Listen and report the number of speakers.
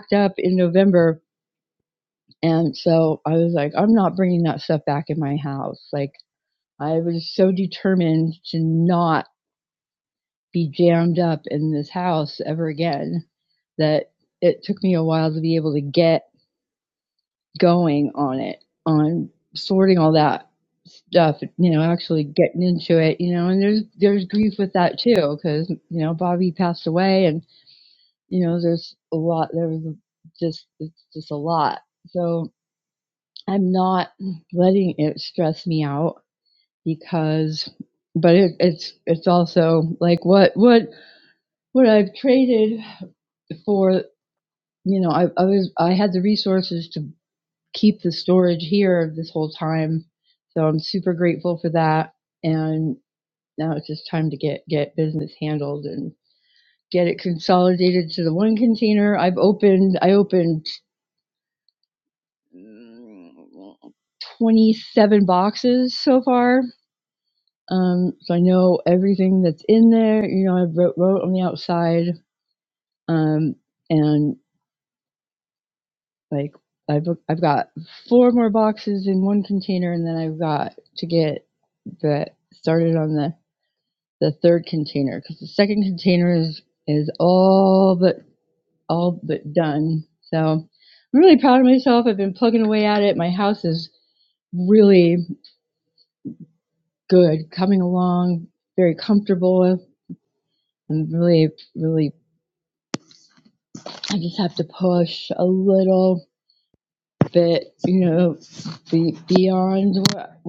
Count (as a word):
one